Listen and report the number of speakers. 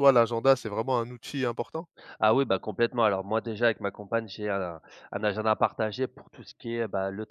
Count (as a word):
two